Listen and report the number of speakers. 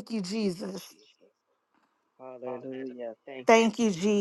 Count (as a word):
two